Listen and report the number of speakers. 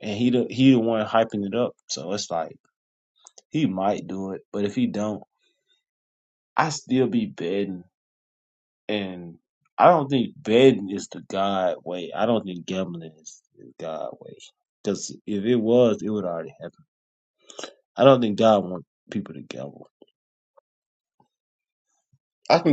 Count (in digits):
1